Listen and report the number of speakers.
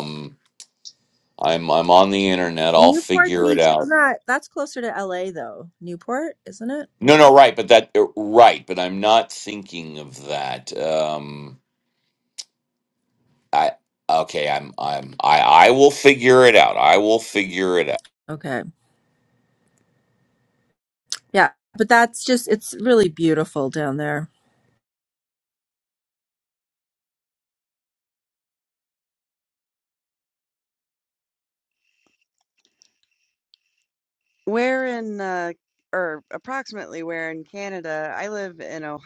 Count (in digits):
3